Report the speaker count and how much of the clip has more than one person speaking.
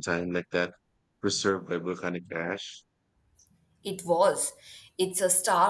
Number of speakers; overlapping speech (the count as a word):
two, no overlap